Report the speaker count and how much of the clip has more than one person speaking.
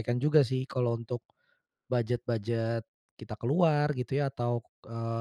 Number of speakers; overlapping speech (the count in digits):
1, no overlap